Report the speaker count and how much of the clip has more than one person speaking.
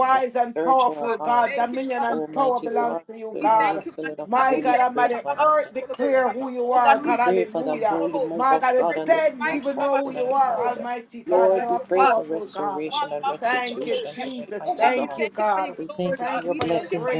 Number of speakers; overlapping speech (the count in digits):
2, about 73%